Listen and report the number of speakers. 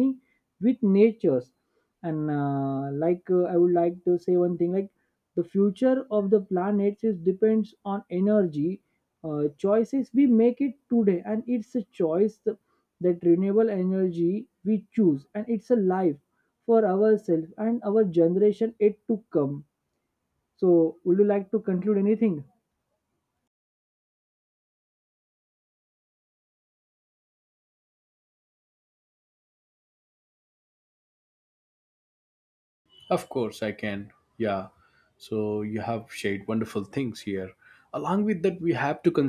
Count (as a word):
two